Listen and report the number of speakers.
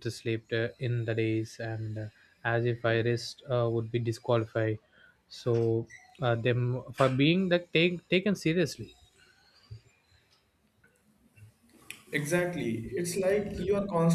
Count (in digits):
2